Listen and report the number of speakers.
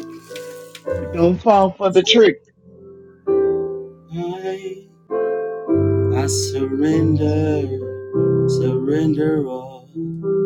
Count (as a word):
two